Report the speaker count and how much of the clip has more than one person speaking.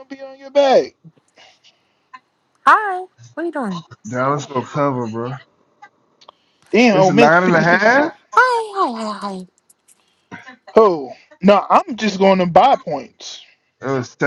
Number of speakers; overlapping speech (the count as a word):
three, about 8%